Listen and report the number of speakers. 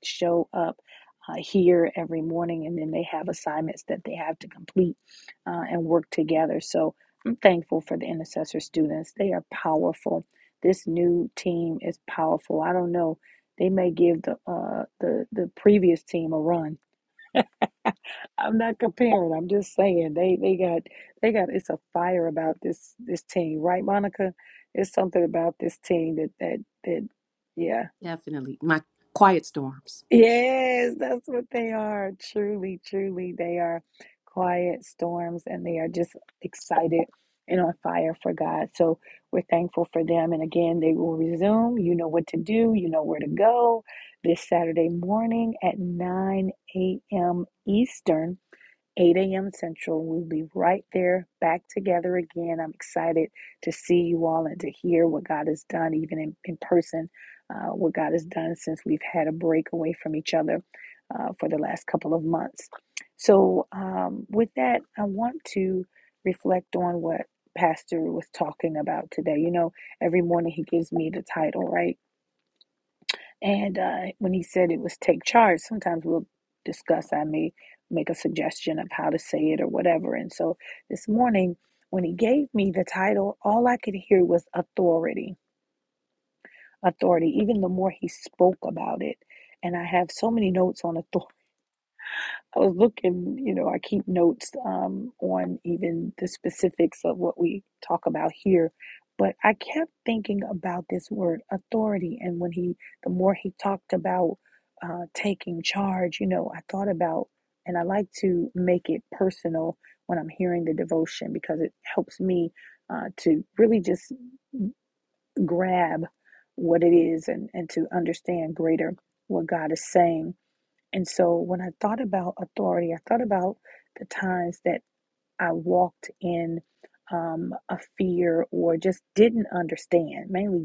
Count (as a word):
two